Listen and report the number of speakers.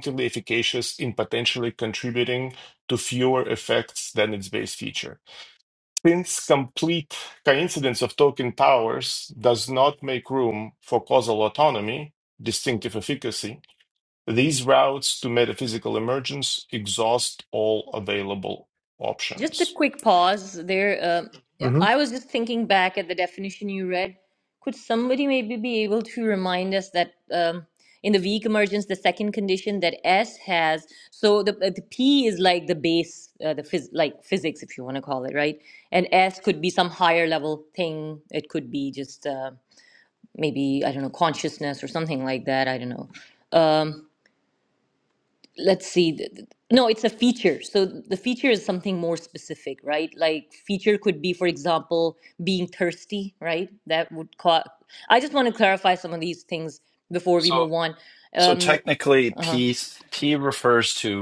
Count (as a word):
three